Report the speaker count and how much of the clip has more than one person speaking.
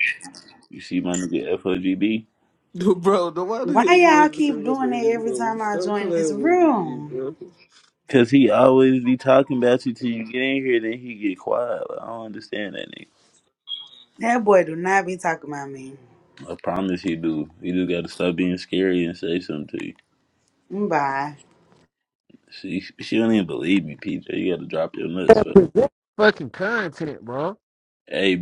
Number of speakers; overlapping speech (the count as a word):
four, about 13%